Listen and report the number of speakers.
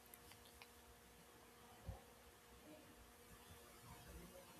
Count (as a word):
zero